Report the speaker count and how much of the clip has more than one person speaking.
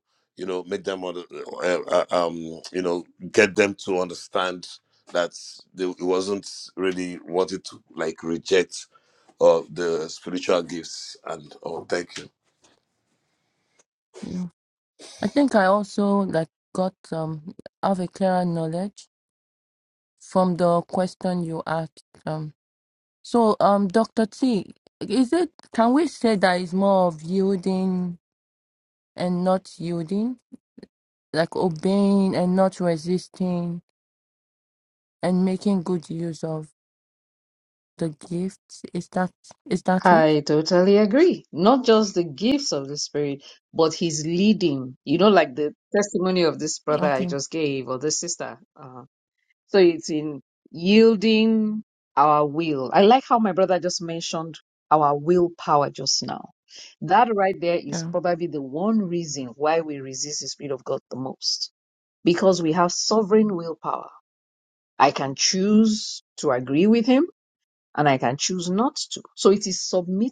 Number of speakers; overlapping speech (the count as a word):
three, about 1%